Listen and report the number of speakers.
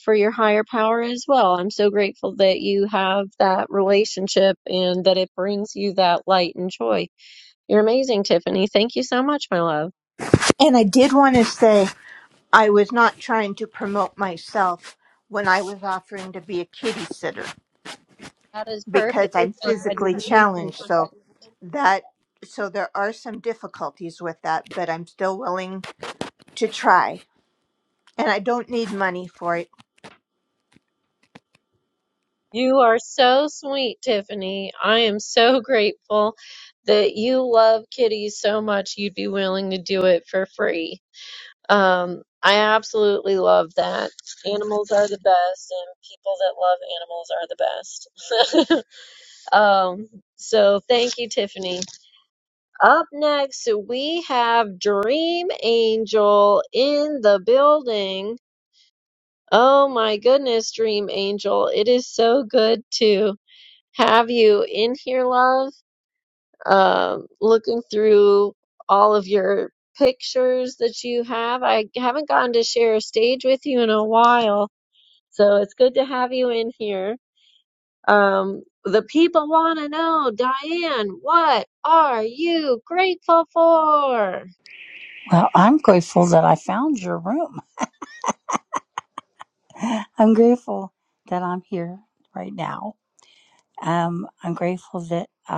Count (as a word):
three